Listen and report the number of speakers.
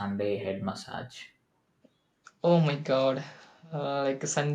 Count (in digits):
2